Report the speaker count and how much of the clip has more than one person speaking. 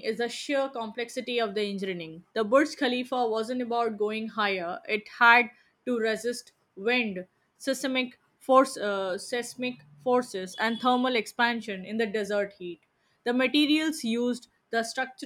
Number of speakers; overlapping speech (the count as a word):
one, no overlap